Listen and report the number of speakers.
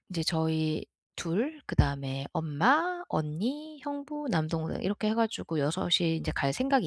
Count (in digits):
1